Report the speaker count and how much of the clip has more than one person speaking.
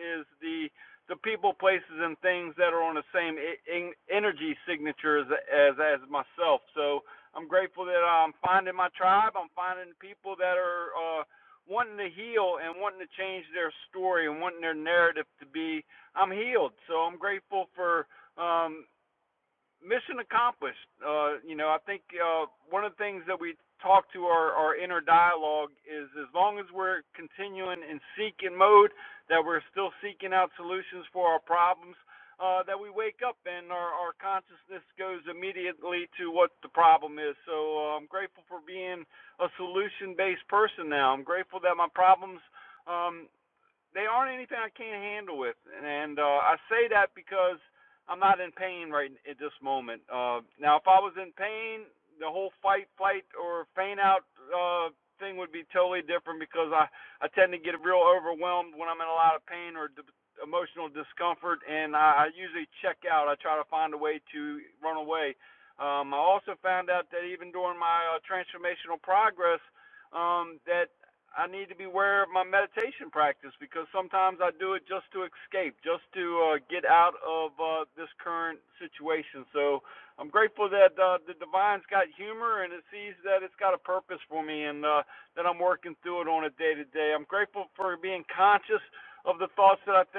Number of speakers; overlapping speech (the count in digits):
1, no overlap